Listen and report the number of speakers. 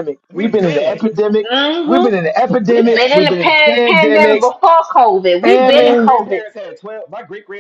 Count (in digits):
3